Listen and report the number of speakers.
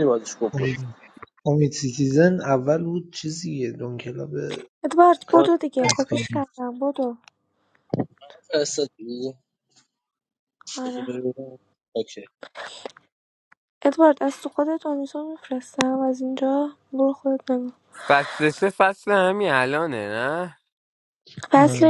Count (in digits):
4